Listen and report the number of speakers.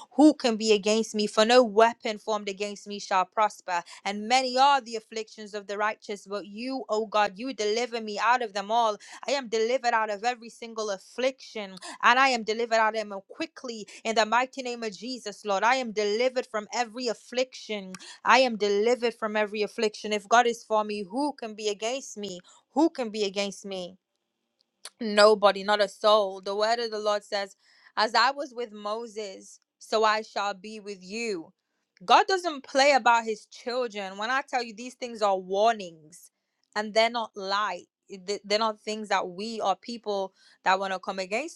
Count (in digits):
1